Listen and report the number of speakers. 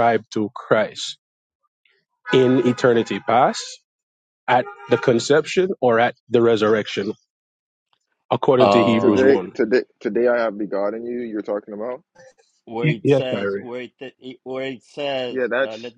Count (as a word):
three